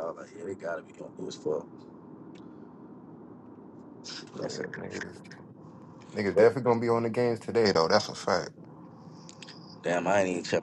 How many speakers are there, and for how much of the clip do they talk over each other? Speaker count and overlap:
2, about 3%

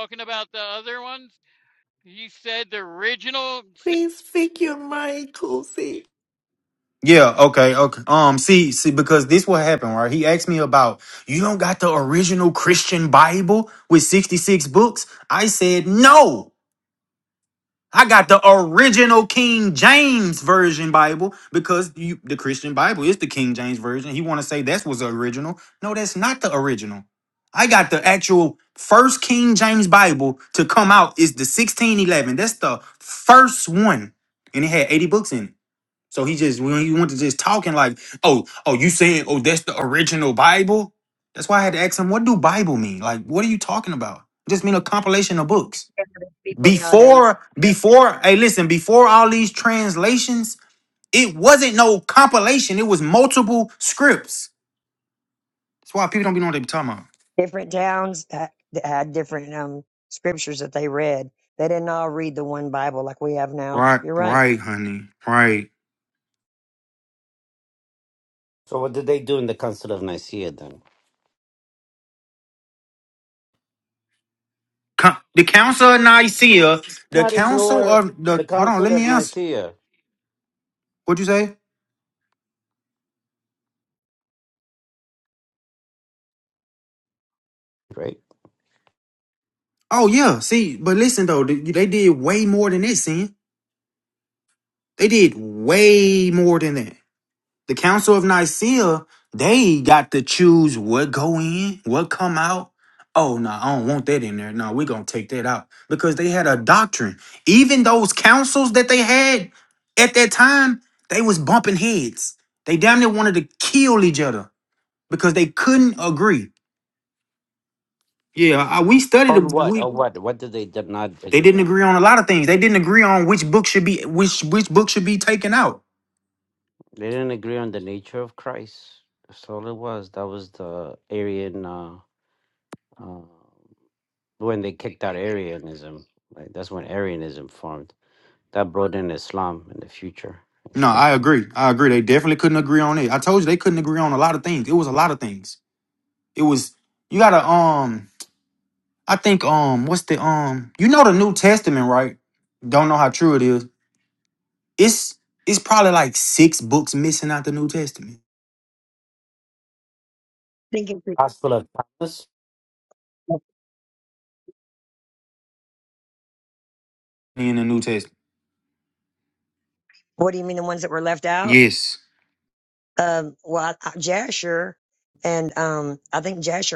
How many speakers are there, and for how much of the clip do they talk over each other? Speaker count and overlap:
5, about 3%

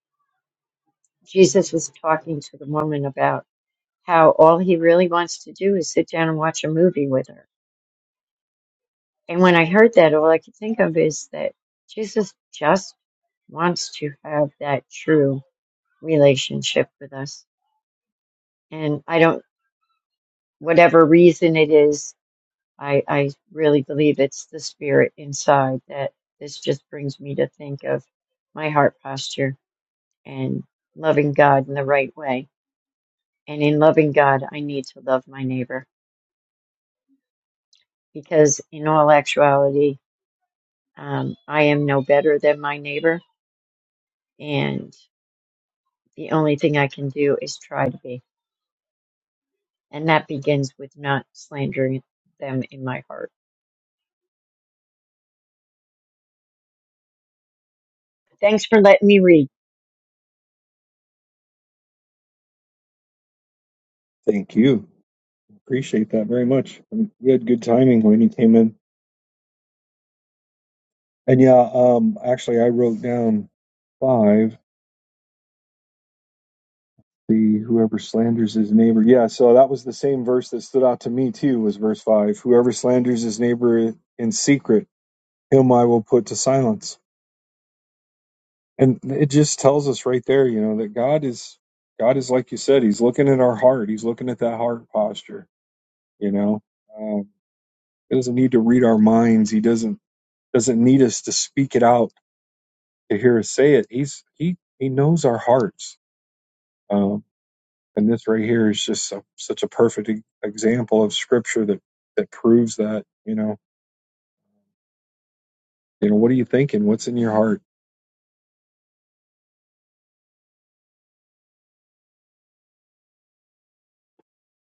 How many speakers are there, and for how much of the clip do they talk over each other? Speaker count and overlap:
2, no overlap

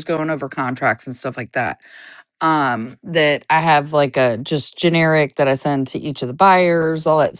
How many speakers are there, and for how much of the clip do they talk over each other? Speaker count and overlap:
1, no overlap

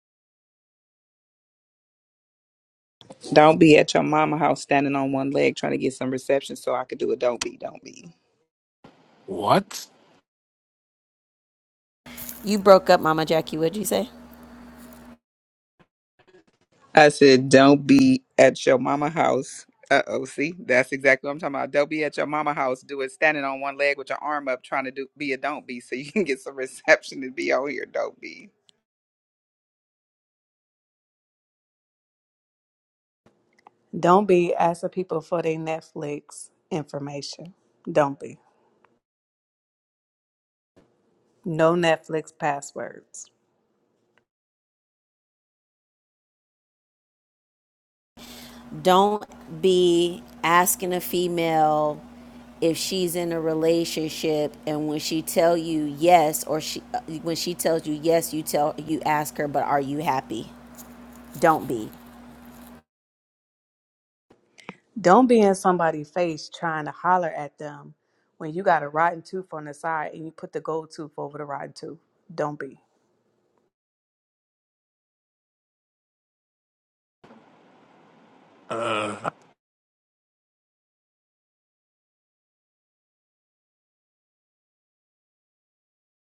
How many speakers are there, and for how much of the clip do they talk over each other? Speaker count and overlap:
4, no overlap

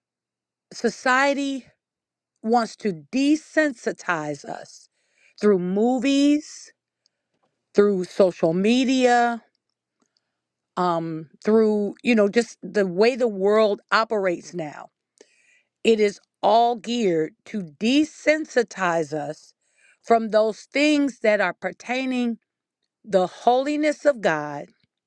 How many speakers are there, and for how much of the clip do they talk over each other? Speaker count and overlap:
1, no overlap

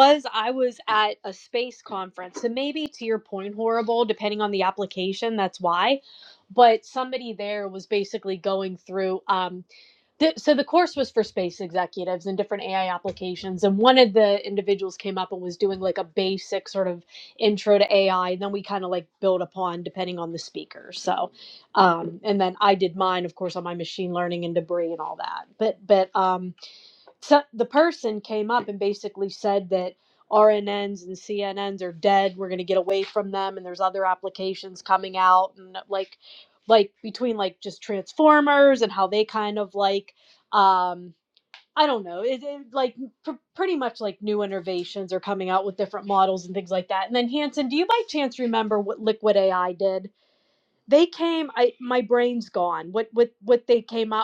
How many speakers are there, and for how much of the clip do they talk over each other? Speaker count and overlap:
1, no overlap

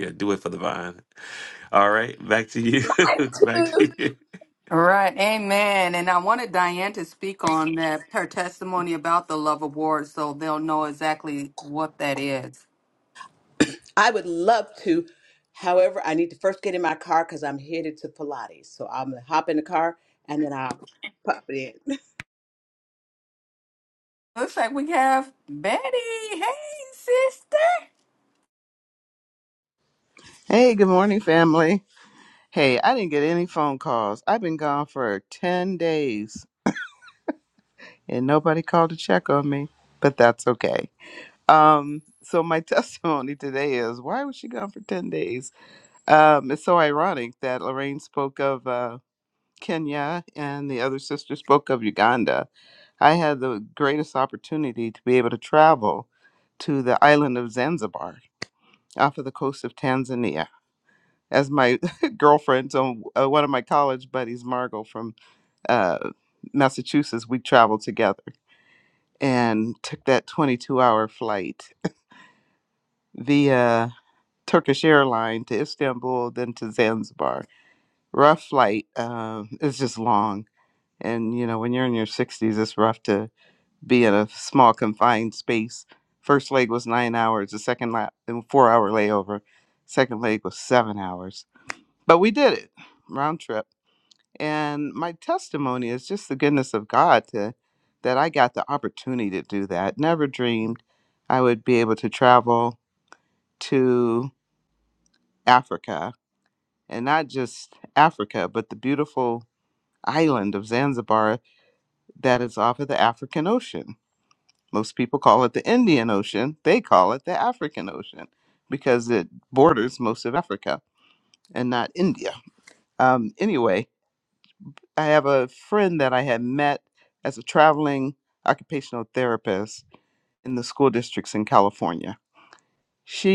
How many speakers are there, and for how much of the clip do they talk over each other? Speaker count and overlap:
4, no overlap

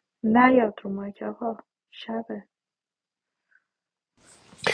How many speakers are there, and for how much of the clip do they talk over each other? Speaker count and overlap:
1, no overlap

